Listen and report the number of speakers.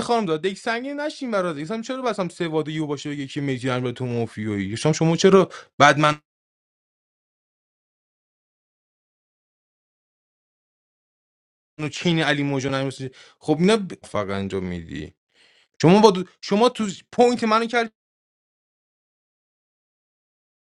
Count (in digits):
1